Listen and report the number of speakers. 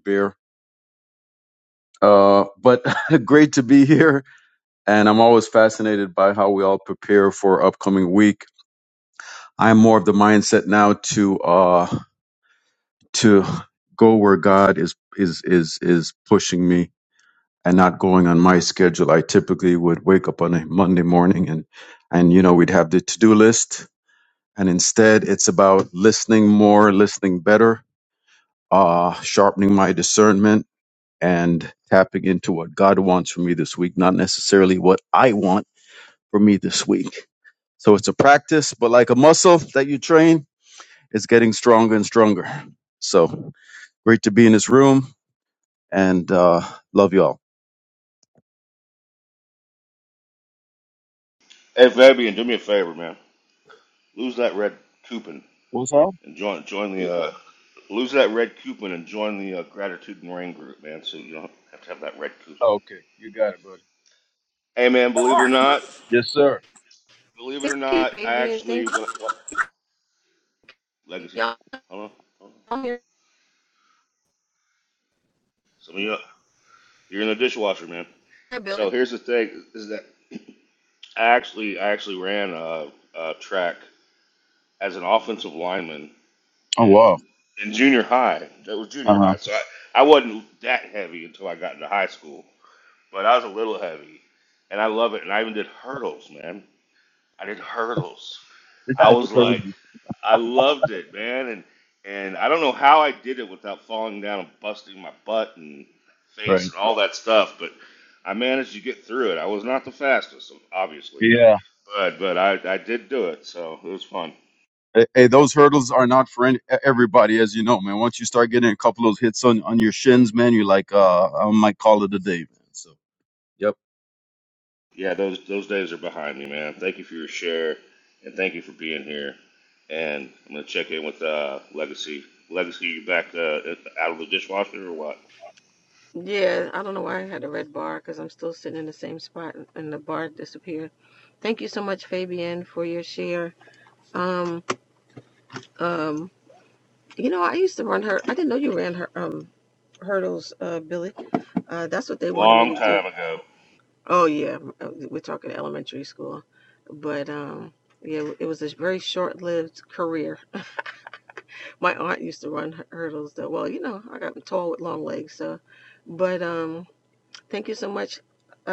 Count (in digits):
3